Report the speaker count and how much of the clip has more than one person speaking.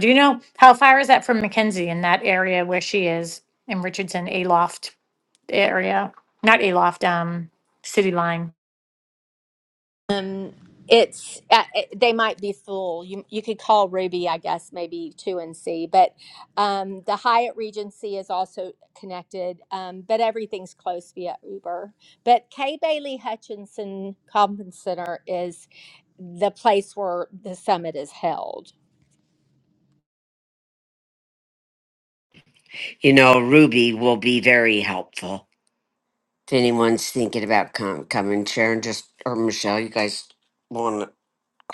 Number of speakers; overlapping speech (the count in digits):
3, no overlap